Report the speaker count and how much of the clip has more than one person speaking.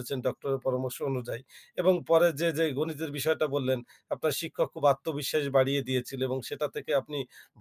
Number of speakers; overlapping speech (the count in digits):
1, no overlap